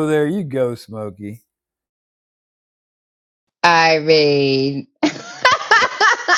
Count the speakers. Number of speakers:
2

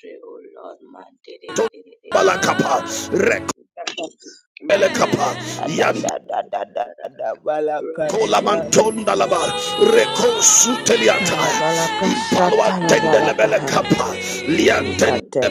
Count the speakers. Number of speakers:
3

